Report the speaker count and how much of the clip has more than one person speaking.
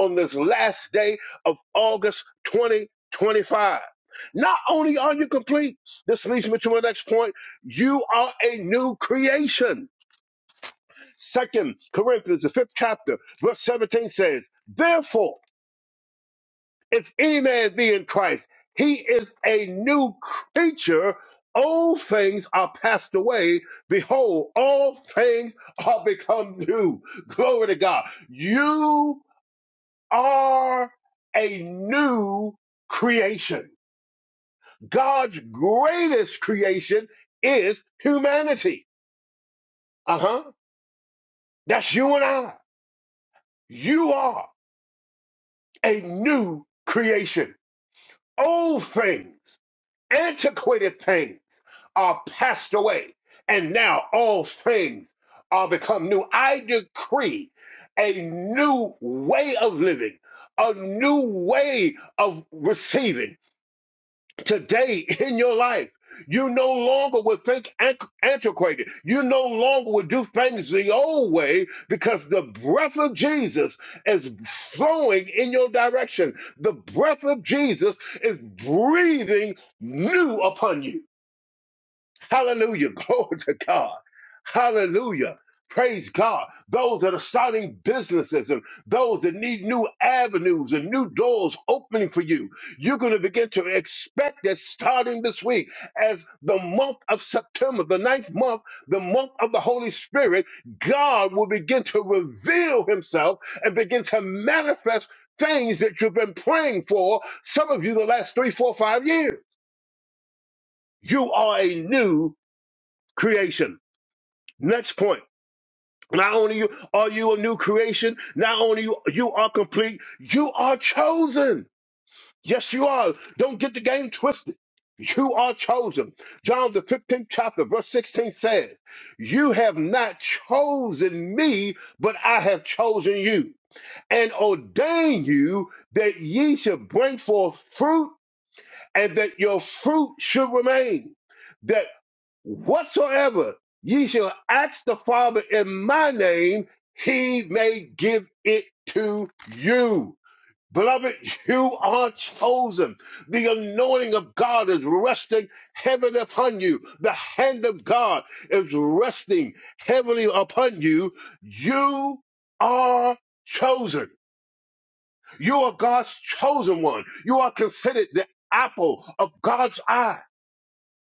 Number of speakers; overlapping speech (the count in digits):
1, no overlap